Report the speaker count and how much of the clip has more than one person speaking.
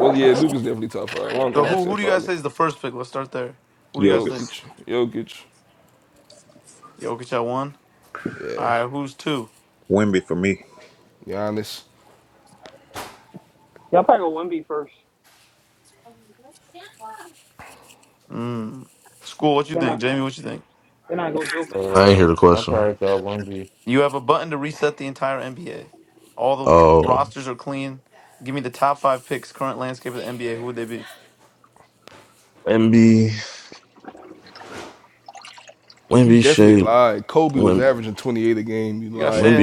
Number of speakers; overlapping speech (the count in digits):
6, about 11%